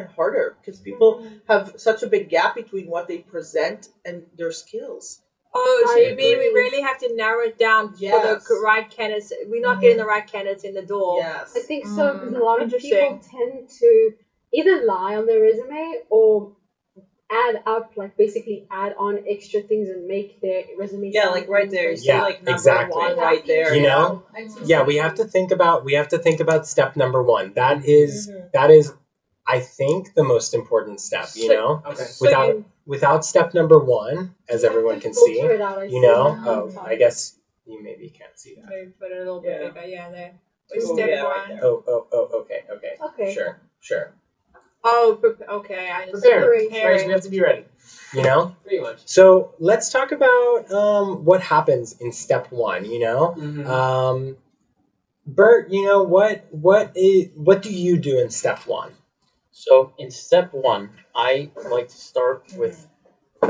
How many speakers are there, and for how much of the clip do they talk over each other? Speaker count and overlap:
6, about 21%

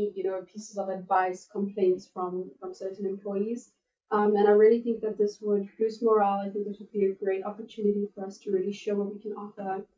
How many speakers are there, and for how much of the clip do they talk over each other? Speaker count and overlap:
1, no overlap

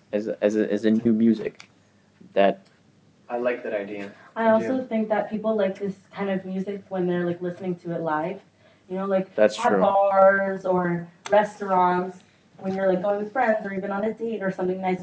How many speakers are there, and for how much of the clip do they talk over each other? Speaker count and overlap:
3, about 7%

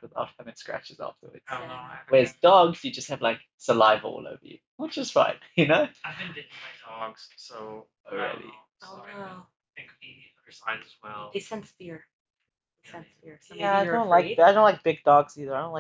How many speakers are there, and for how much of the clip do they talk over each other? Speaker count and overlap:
4, about 26%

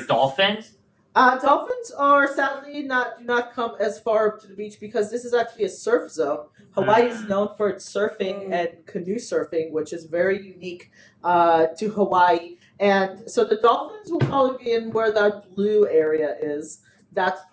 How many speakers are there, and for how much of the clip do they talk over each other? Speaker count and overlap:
2, about 3%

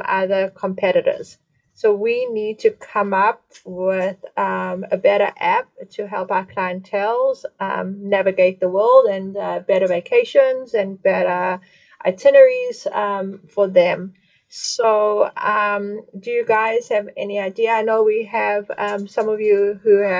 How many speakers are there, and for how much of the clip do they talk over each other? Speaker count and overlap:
1, no overlap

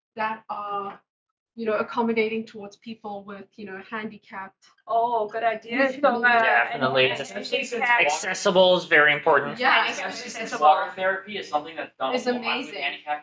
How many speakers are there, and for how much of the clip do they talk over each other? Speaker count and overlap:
4, about 43%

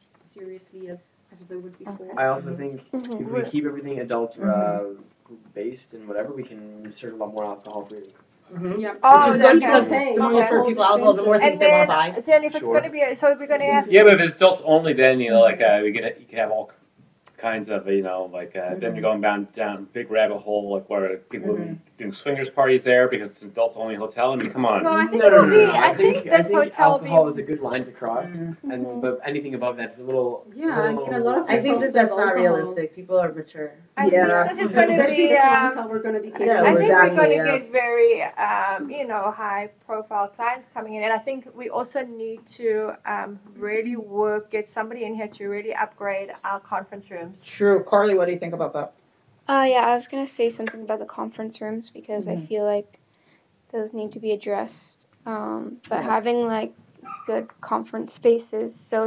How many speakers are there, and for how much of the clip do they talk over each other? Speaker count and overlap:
7, about 28%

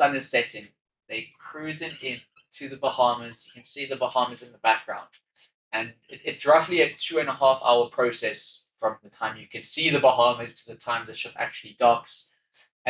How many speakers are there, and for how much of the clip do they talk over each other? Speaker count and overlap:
1, no overlap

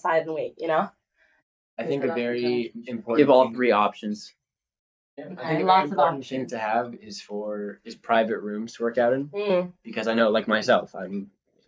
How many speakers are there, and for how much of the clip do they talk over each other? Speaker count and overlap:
3, about 27%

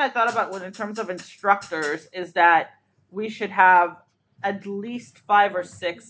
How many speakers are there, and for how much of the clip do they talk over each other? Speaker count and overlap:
1, no overlap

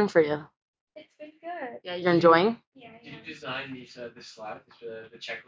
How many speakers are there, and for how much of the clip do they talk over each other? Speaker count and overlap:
3, about 13%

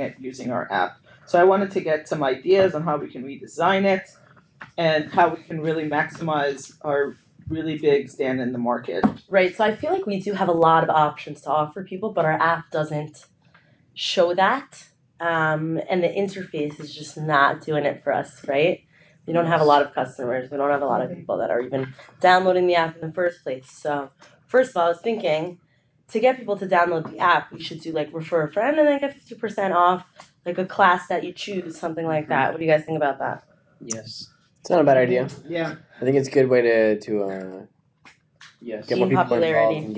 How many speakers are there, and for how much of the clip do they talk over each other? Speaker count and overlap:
4, about 6%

